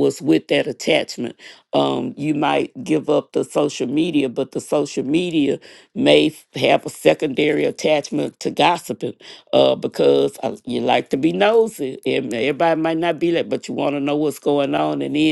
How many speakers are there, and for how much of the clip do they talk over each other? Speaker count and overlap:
1, no overlap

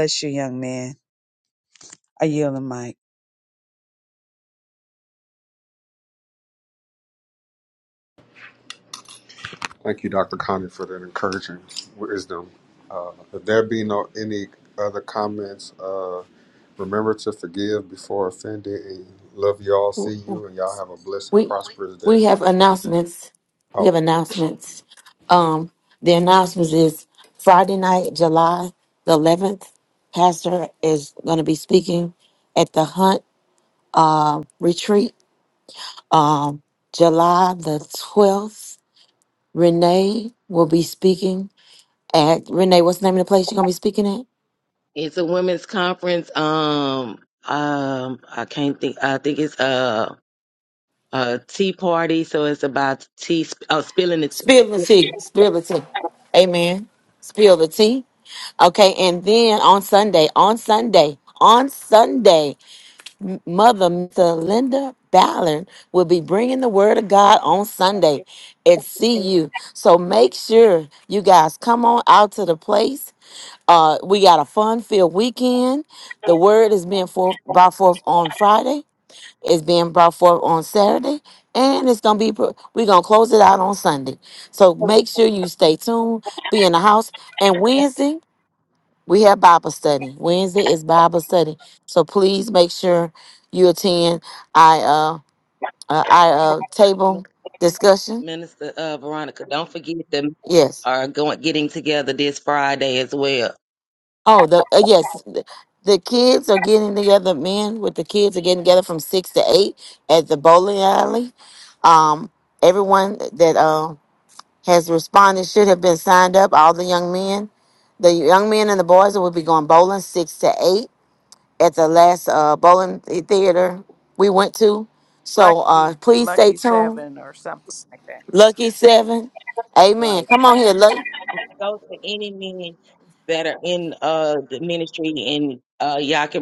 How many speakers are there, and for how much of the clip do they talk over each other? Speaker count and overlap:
5, about 2%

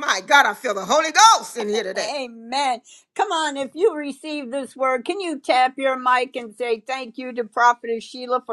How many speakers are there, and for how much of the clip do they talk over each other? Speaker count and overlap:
2, about 2%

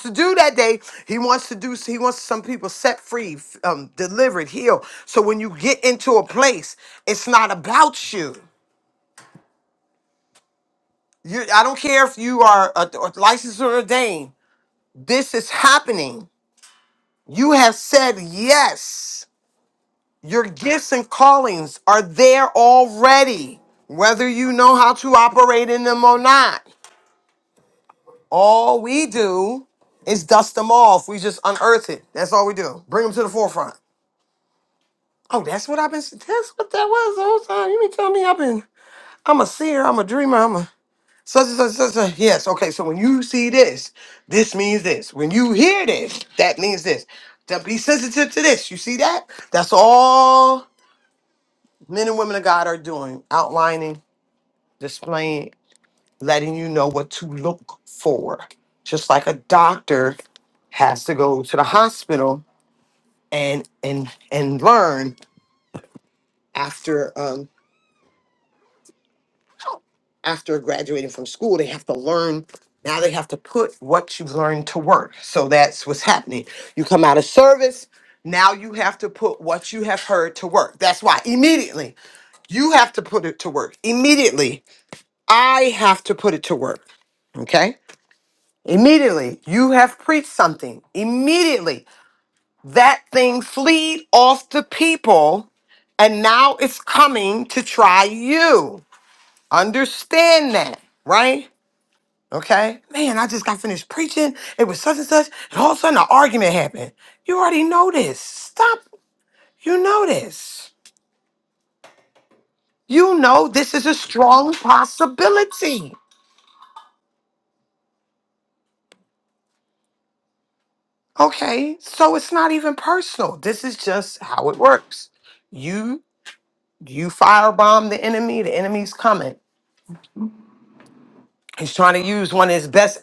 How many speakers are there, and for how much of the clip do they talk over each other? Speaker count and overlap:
1, no overlap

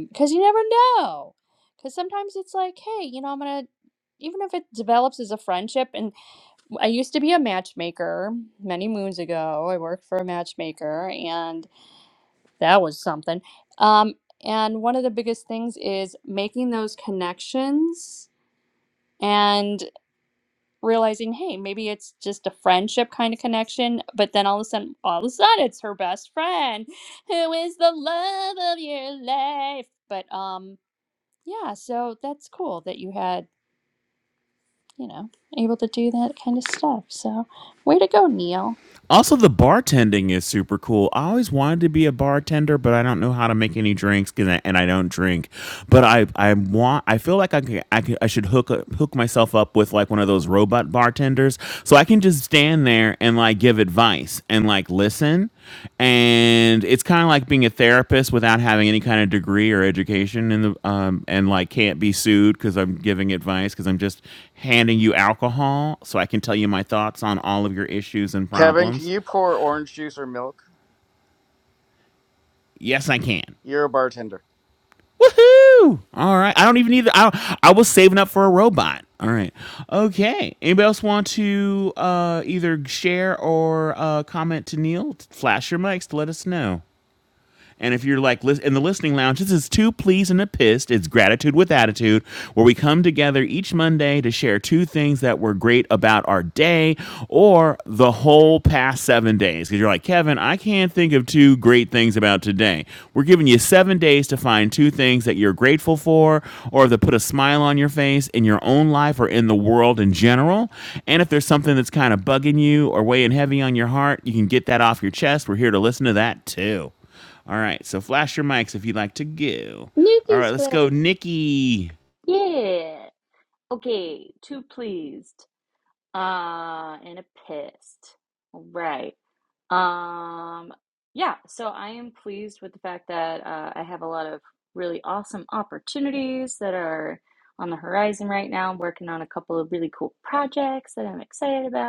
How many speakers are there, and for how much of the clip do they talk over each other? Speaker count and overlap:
4, about 1%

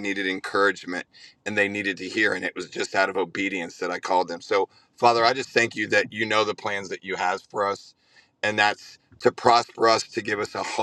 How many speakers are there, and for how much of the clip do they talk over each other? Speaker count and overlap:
1, no overlap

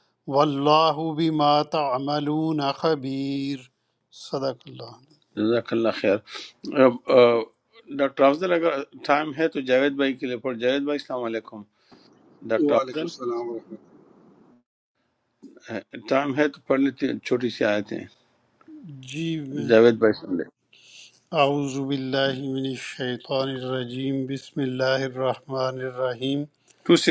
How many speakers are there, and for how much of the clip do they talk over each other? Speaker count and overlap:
3, about 3%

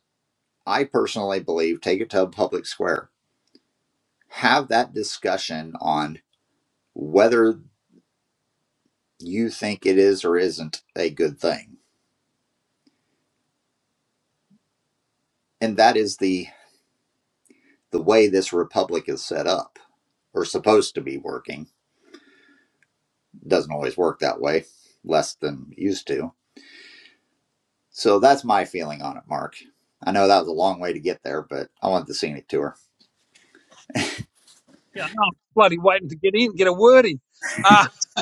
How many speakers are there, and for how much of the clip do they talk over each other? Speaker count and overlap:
2, no overlap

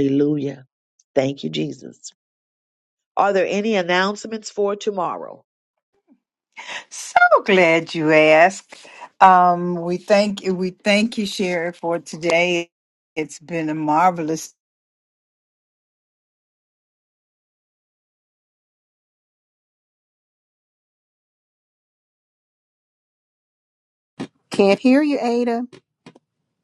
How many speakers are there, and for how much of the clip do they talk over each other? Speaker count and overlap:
3, no overlap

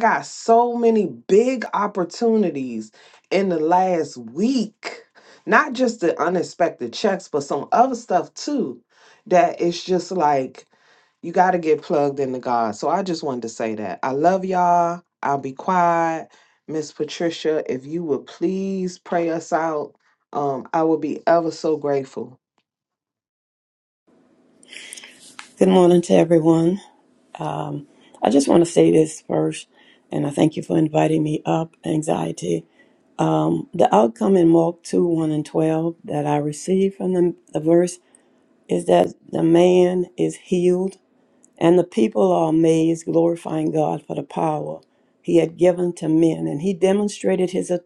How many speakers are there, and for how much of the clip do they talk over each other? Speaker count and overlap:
2, no overlap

